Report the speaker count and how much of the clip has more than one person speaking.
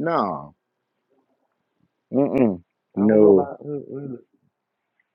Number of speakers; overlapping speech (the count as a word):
two, about 9%